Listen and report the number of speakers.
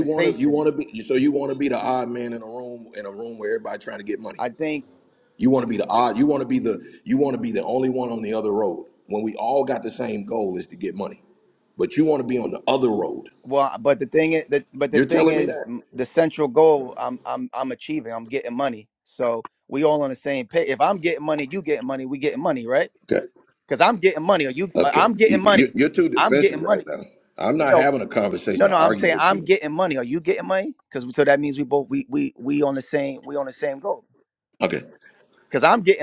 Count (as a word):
two